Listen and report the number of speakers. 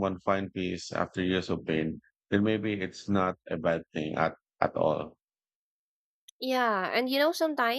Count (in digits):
2